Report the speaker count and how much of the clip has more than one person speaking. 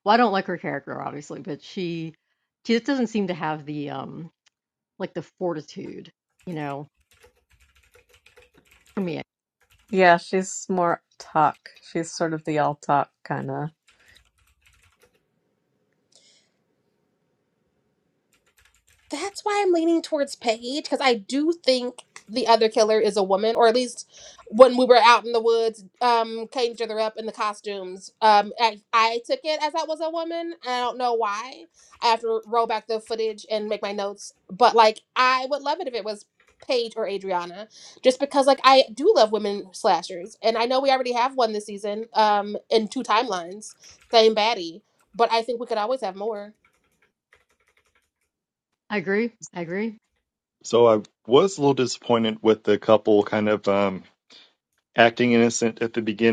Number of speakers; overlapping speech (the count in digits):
4, no overlap